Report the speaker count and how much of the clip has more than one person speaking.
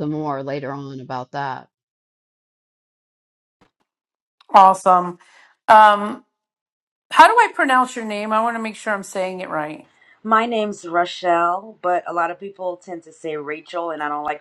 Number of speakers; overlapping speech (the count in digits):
3, no overlap